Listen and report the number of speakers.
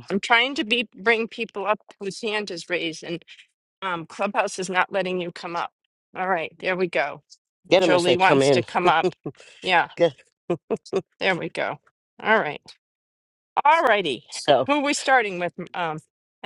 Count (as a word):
two